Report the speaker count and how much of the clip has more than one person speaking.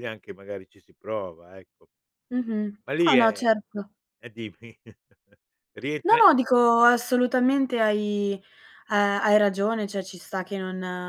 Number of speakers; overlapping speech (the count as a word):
two, about 7%